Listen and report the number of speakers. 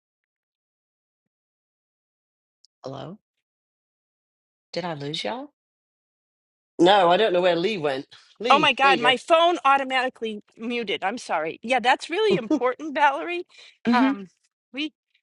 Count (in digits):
3